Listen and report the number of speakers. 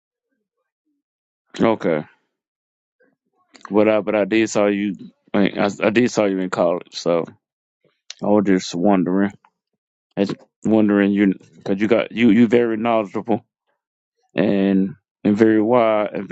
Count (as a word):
one